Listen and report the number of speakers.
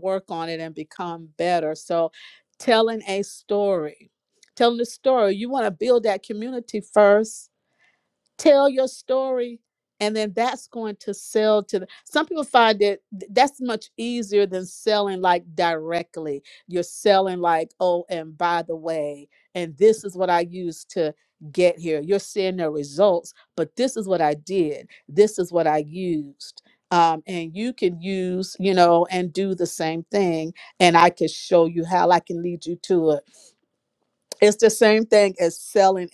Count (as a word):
one